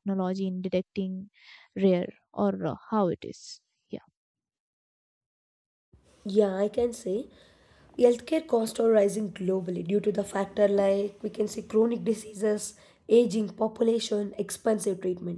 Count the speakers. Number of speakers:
two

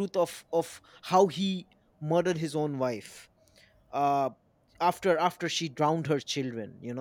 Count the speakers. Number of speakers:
one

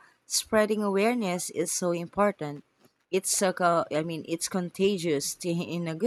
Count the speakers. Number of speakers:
one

